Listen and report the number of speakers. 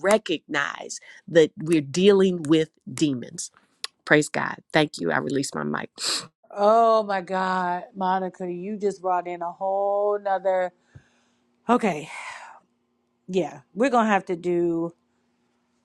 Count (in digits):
2